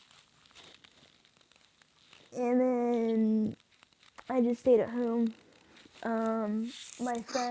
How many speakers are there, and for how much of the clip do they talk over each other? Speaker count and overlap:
1, no overlap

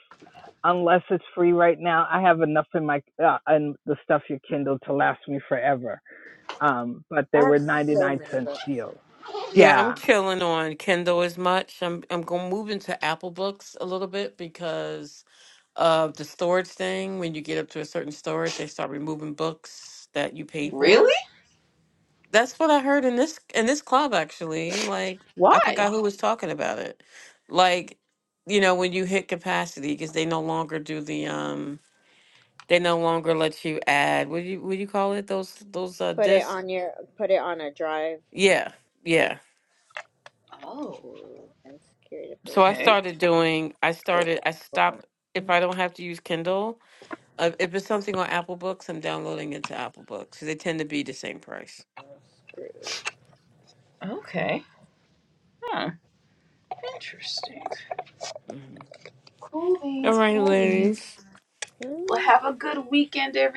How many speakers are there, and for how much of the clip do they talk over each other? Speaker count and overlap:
4, about 6%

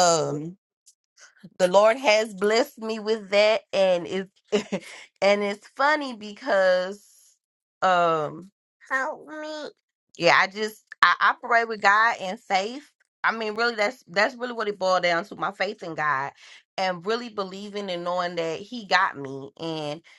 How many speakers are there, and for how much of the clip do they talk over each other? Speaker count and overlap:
1, no overlap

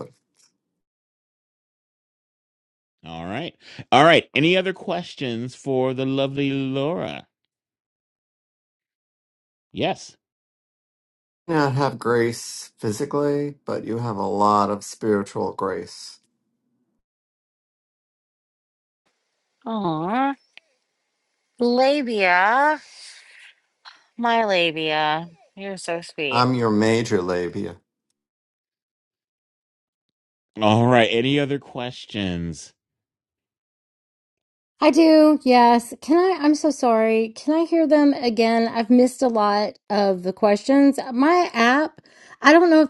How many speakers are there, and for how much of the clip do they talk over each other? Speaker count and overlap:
4, under 1%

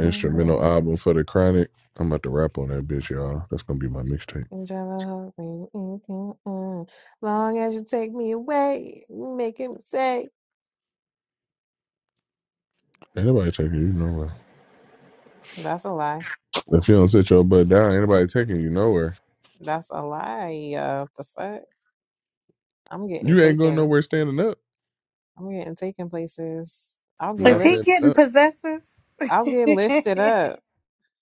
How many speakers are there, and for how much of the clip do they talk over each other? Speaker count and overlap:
3, about 8%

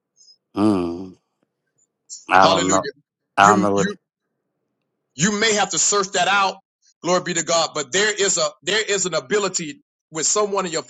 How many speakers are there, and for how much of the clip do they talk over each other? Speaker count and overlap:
2, about 9%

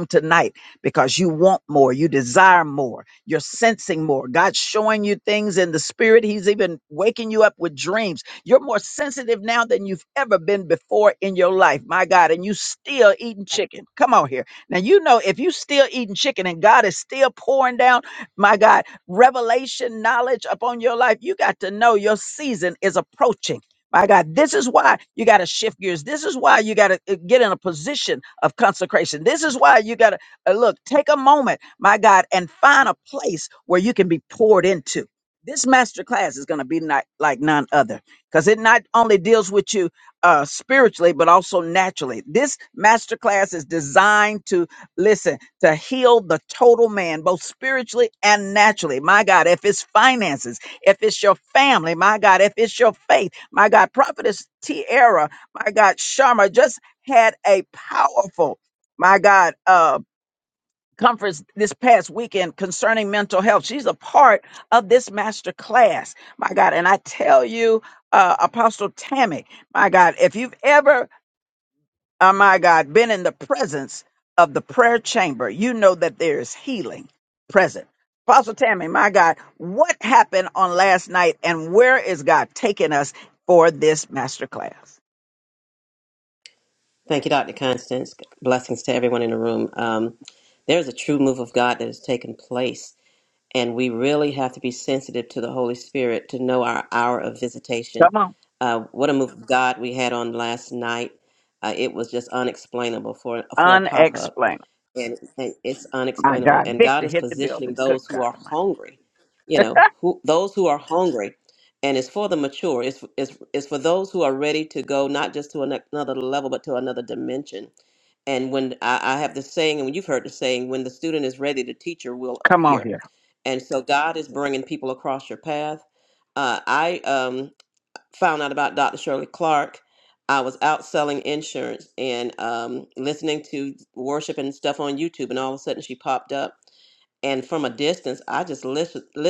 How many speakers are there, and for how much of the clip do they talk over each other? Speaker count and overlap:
2, about 3%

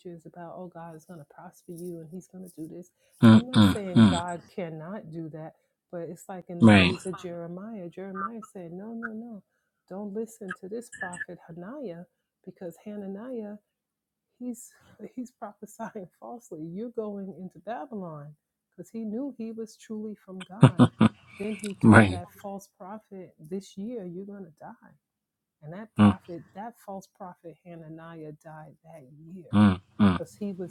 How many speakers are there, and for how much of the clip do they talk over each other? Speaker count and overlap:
2, about 6%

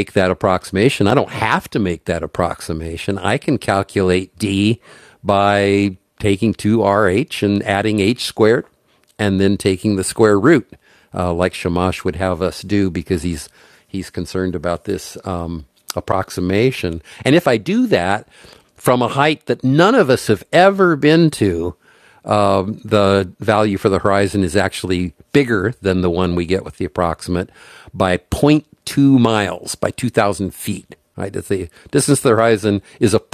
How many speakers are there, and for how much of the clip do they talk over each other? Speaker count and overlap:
1, no overlap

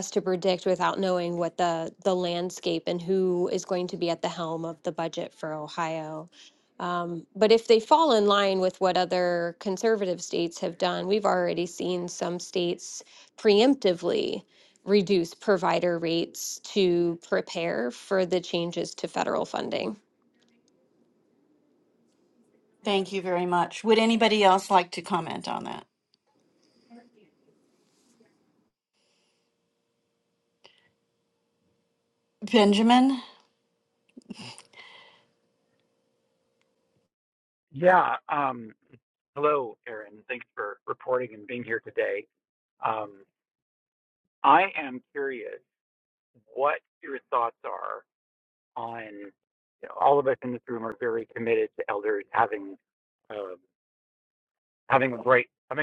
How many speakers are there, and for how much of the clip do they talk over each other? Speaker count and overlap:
3, no overlap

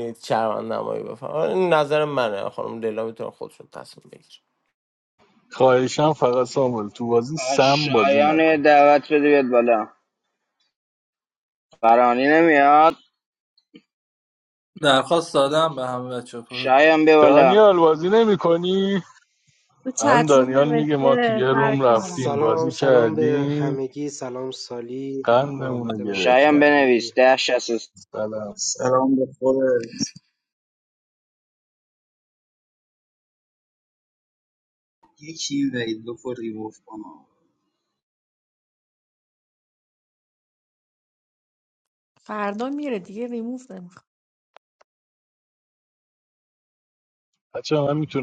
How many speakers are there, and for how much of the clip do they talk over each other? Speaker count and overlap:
7, about 15%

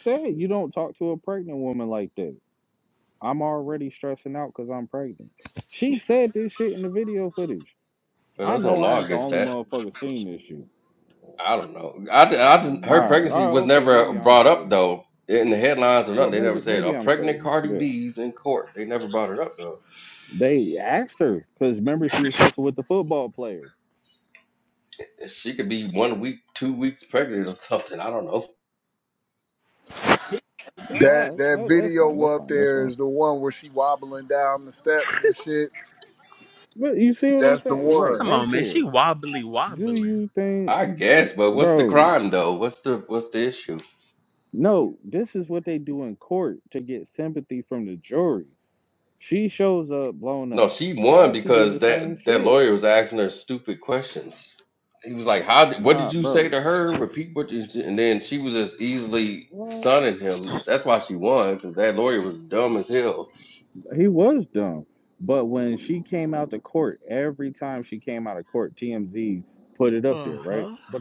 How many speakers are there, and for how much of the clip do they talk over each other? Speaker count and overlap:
4, about 18%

